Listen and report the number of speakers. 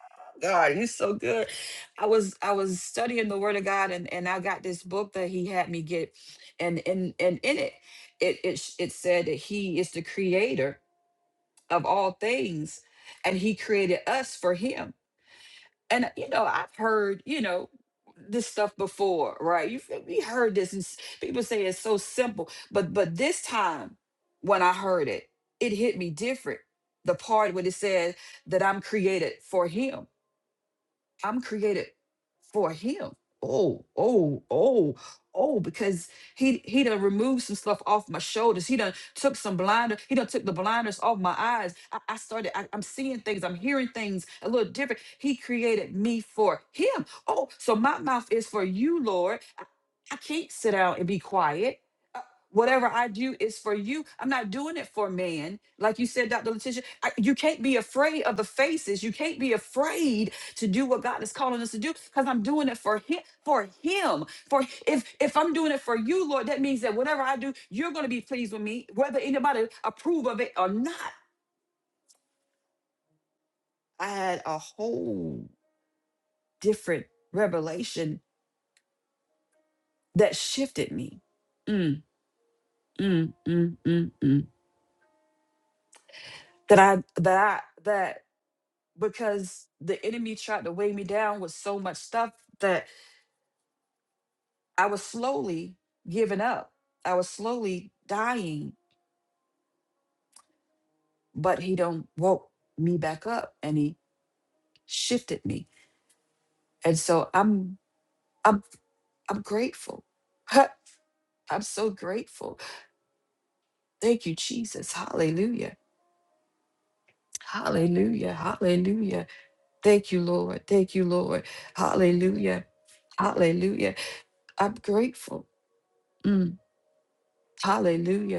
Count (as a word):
one